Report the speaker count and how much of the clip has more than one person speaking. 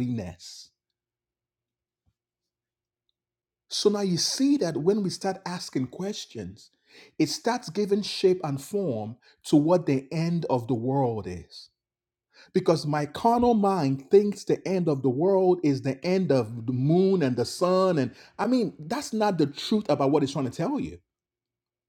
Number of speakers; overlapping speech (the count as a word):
one, no overlap